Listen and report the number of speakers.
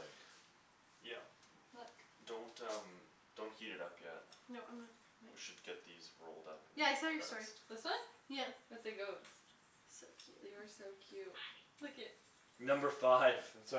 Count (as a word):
four